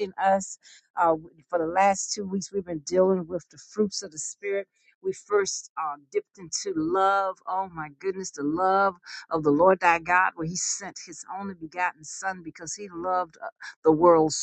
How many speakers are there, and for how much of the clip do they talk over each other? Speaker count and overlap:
1, no overlap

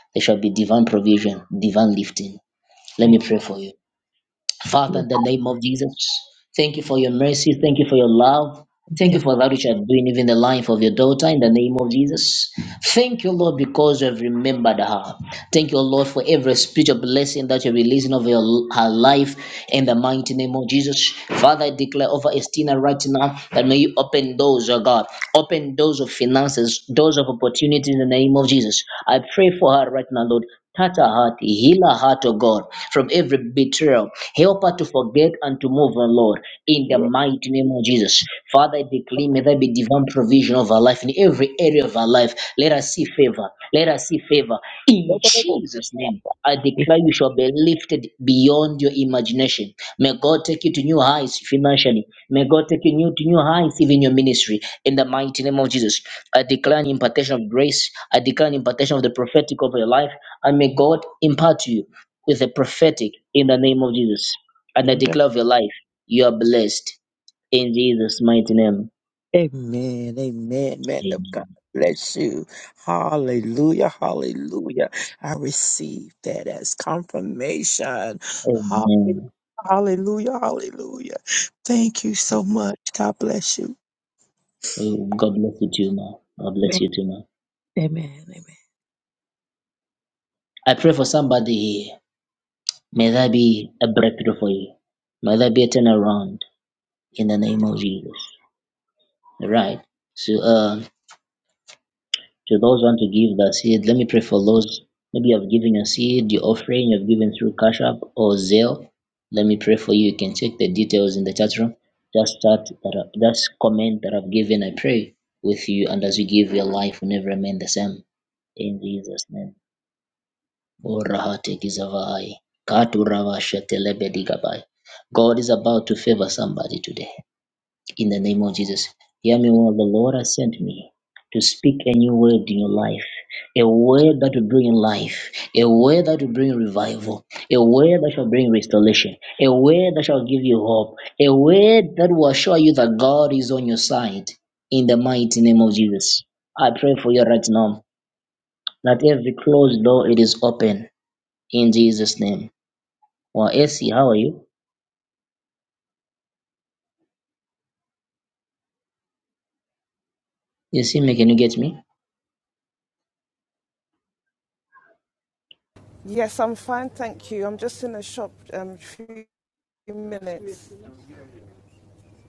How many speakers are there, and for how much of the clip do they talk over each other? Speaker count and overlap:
3, about 1%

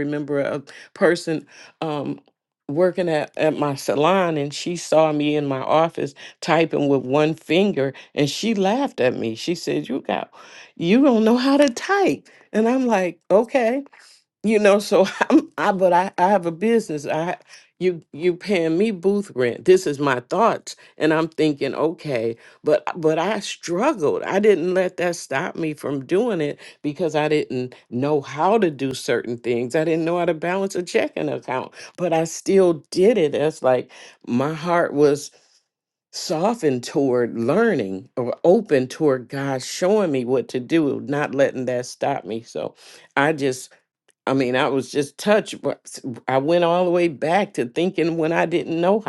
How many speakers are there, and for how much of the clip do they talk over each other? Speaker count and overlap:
1, no overlap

